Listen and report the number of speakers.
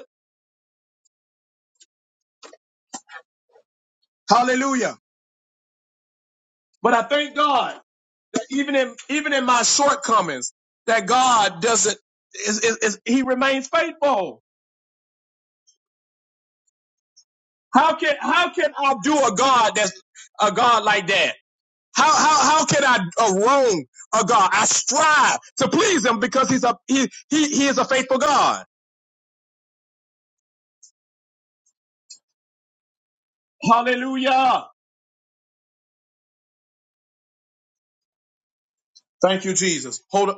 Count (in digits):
1